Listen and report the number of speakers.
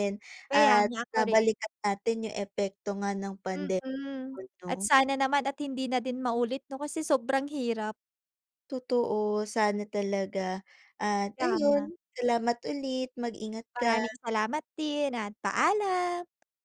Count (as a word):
two